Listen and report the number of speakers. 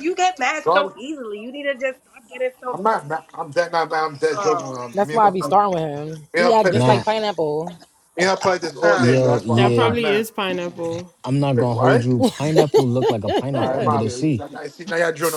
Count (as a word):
five